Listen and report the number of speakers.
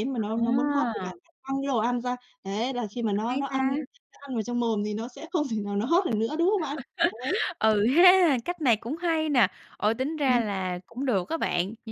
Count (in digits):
2